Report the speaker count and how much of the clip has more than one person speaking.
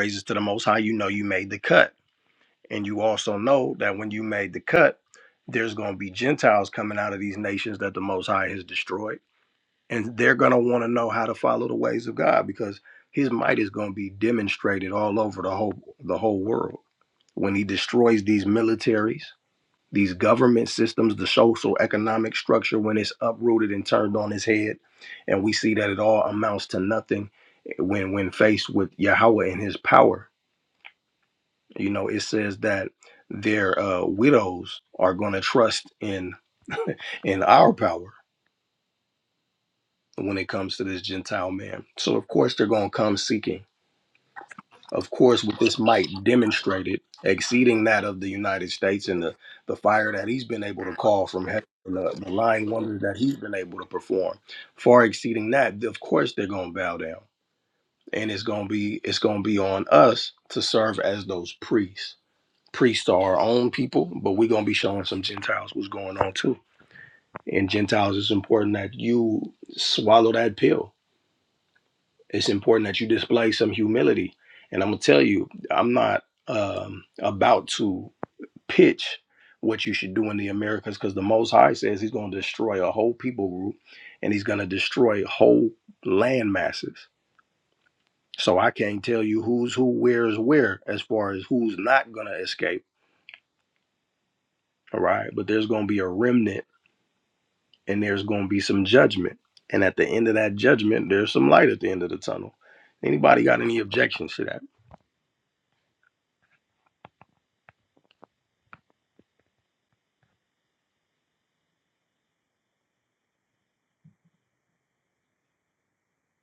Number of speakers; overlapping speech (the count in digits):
1, no overlap